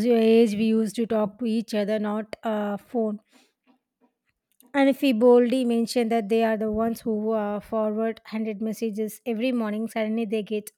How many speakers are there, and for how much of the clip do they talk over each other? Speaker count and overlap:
1, no overlap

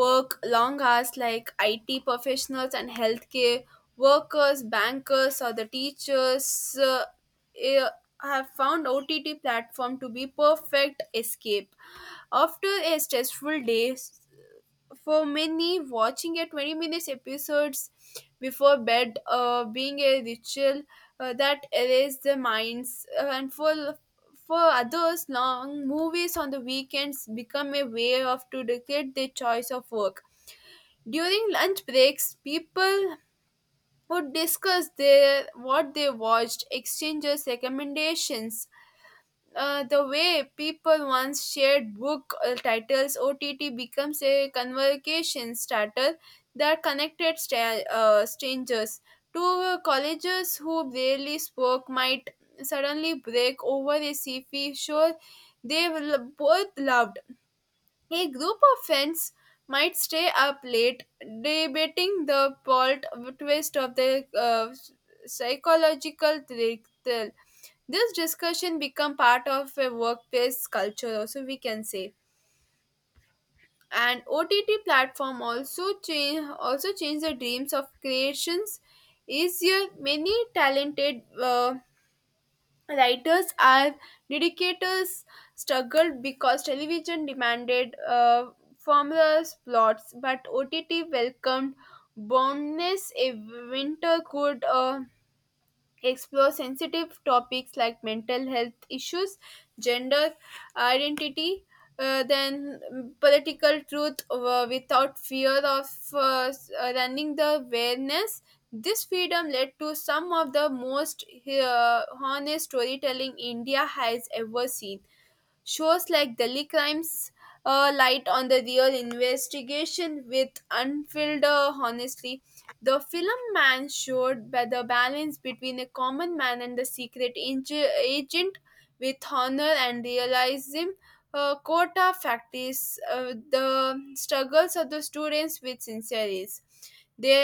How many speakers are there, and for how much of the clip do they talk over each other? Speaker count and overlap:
1, no overlap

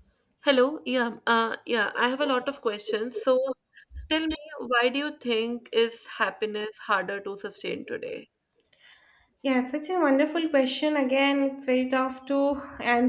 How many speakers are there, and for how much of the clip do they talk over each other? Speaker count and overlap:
2, no overlap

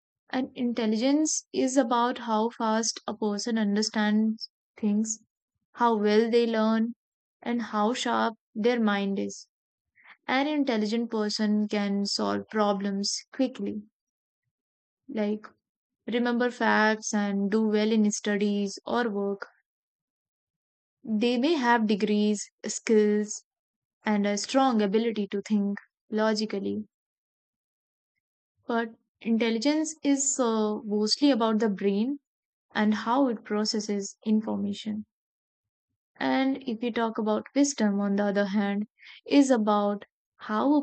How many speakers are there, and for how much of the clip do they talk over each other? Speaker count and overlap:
1, no overlap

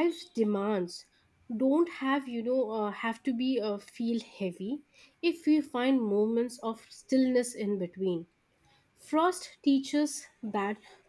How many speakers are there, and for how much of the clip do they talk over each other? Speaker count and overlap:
1, no overlap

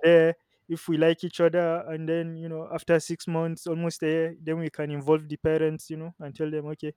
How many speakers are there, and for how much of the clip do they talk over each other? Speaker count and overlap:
1, no overlap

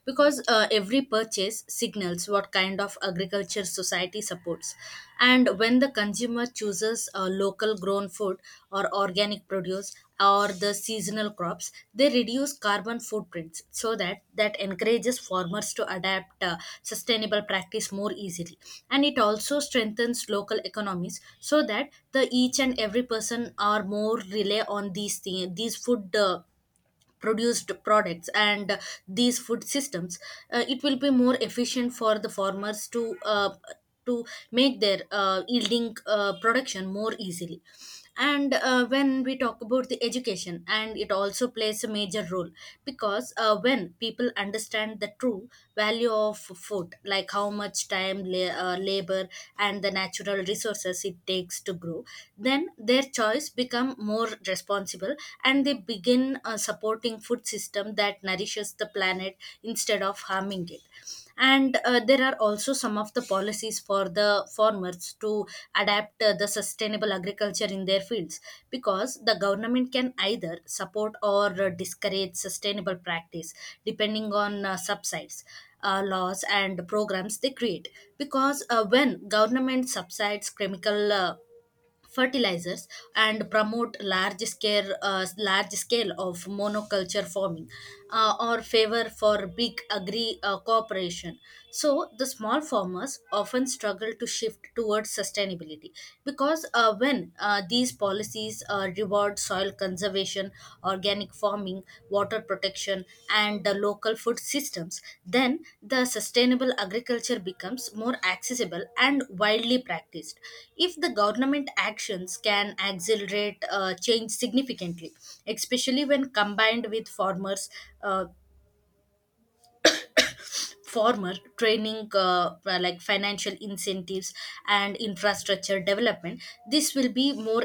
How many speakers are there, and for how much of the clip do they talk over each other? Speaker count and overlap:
1, no overlap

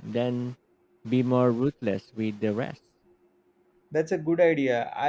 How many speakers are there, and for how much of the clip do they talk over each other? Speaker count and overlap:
2, no overlap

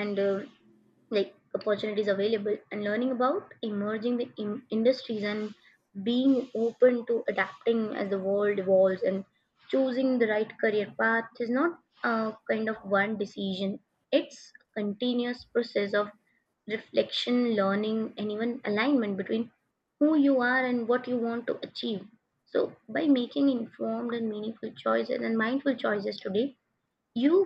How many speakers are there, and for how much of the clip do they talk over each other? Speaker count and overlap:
1, no overlap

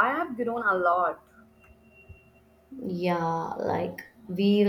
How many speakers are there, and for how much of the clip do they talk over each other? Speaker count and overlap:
2, no overlap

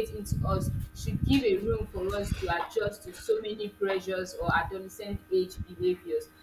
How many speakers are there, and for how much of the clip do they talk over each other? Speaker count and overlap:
1, no overlap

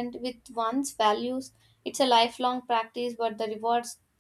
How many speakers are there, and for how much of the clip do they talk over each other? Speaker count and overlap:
1, no overlap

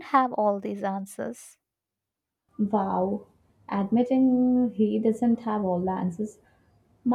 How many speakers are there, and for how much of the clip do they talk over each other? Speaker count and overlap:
2, no overlap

